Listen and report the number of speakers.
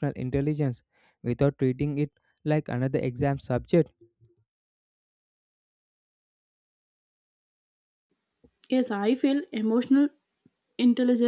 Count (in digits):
2